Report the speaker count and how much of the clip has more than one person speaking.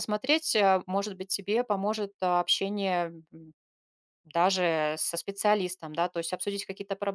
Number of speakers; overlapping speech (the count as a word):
one, no overlap